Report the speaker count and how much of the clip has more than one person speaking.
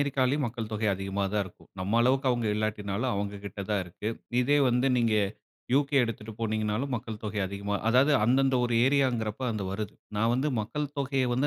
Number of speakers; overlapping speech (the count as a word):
one, no overlap